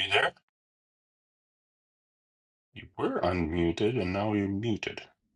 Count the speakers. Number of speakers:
one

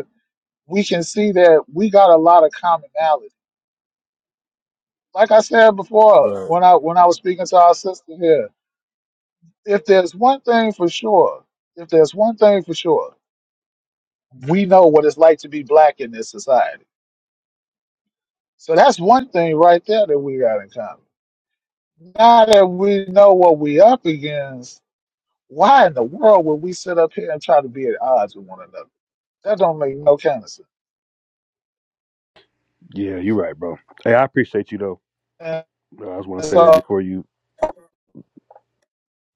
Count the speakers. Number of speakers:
two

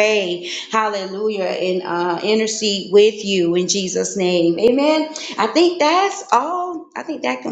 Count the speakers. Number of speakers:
one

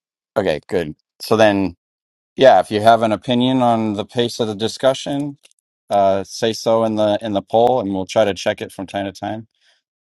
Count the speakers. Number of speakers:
one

